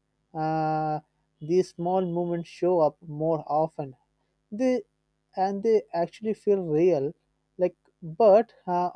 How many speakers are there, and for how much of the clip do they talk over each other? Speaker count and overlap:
1, no overlap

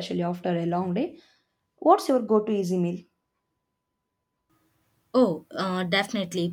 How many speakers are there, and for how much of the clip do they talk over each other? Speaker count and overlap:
2, no overlap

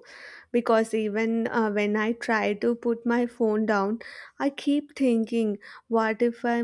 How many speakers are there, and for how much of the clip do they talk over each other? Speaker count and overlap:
1, no overlap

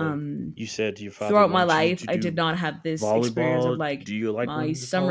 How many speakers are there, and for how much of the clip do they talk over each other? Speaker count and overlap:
2, about 60%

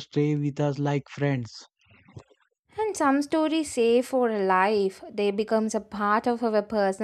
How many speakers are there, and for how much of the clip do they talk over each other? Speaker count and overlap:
2, no overlap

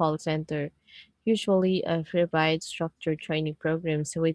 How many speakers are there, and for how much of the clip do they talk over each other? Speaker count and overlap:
1, no overlap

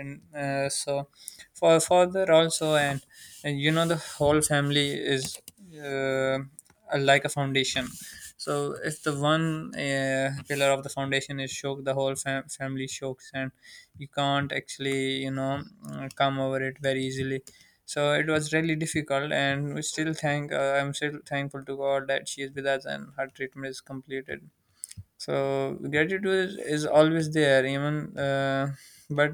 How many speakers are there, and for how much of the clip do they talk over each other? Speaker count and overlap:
1, no overlap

